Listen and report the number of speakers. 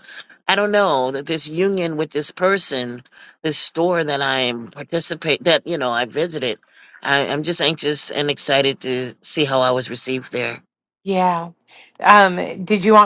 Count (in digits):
2